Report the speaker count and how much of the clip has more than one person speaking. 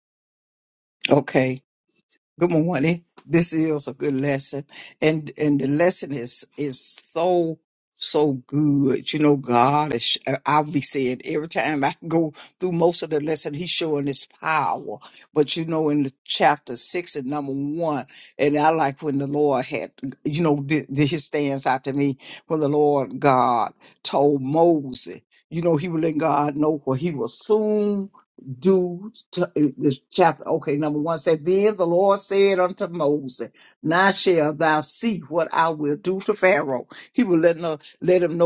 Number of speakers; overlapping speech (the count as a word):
one, no overlap